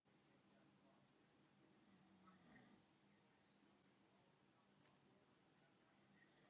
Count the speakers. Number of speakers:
0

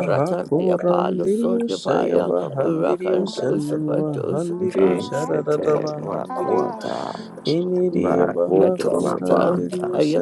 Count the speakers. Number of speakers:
3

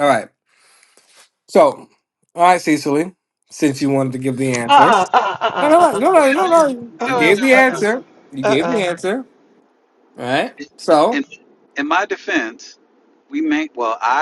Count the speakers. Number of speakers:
3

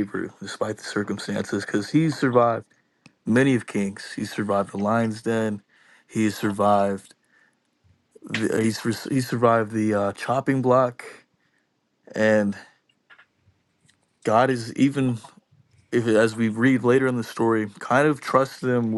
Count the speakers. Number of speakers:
1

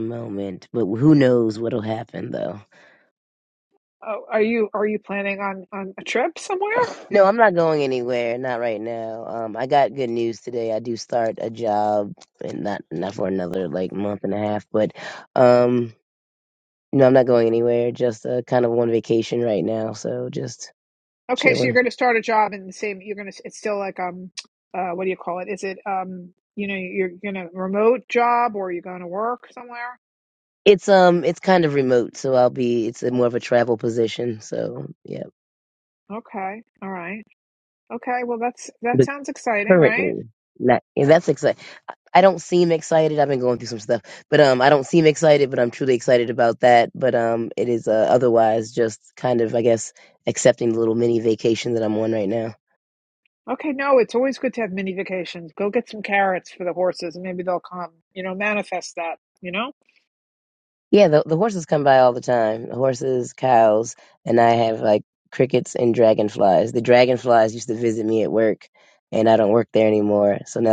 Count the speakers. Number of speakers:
2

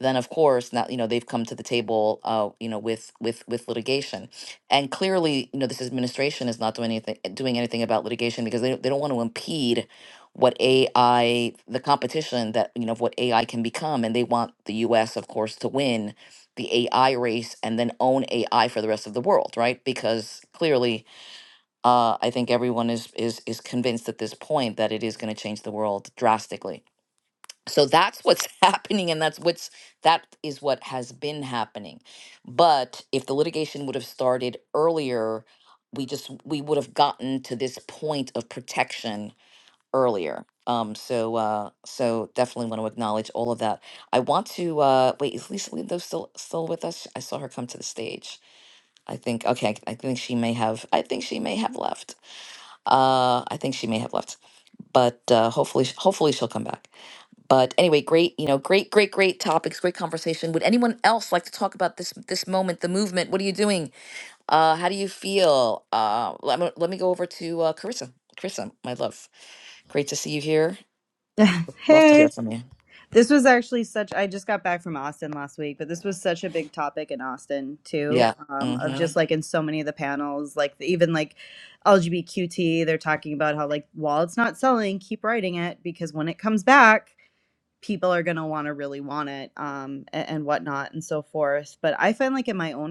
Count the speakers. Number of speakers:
2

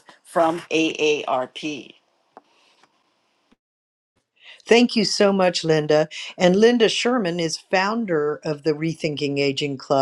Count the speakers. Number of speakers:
2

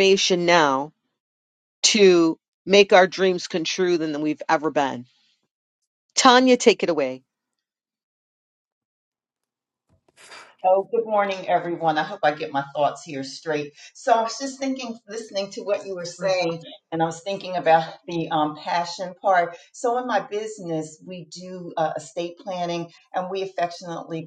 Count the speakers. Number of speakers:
2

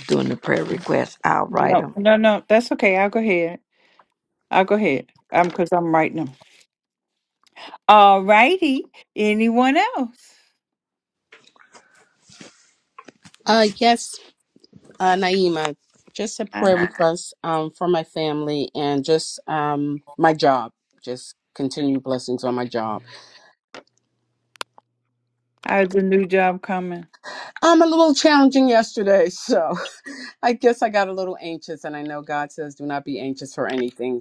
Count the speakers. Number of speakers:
3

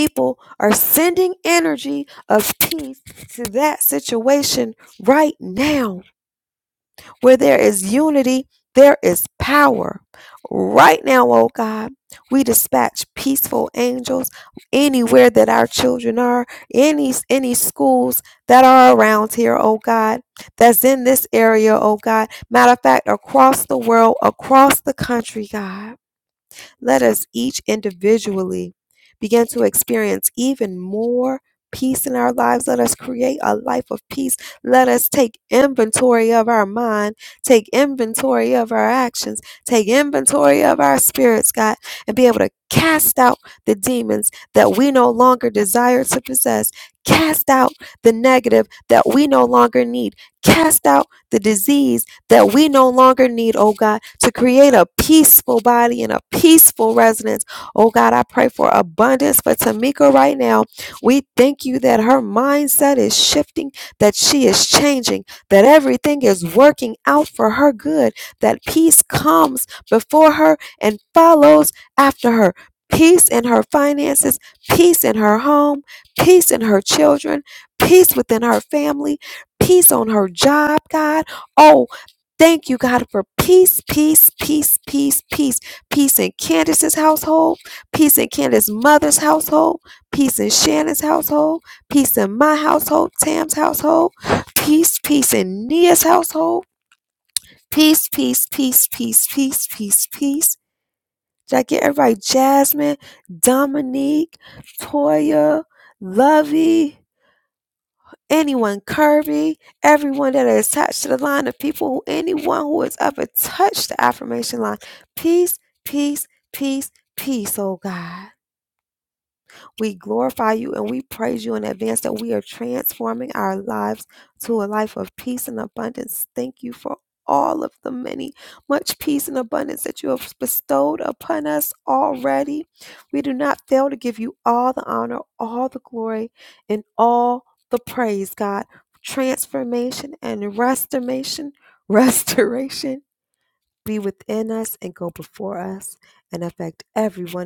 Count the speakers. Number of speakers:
1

